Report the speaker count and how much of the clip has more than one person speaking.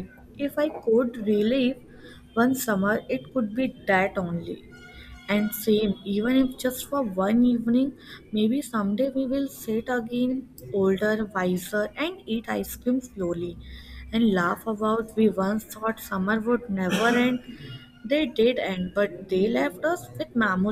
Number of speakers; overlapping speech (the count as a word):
one, no overlap